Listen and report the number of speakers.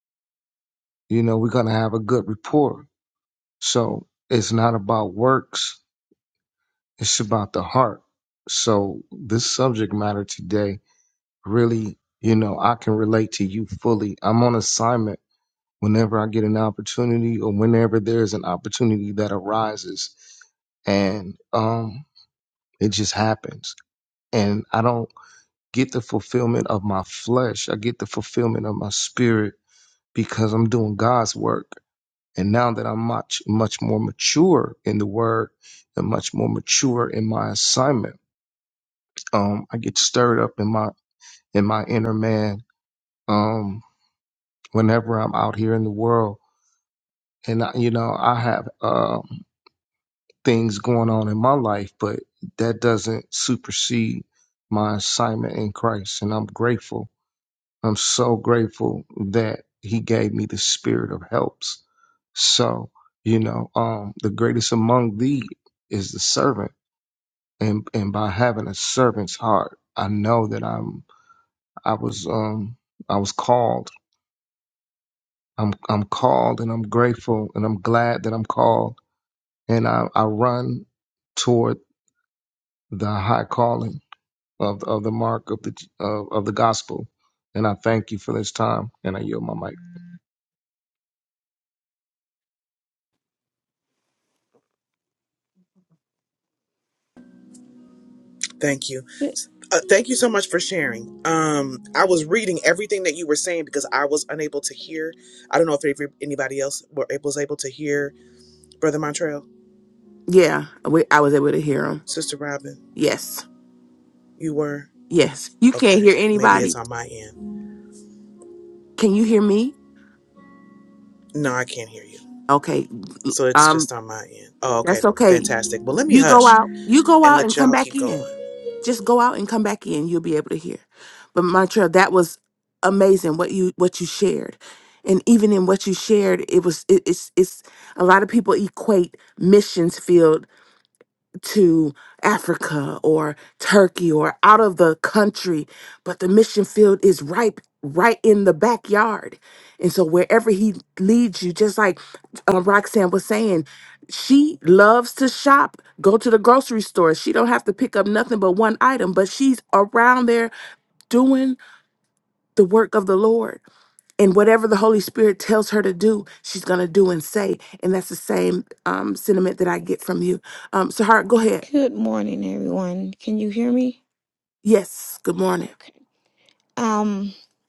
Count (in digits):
4